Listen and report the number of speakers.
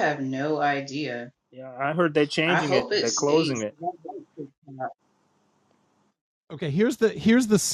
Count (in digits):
3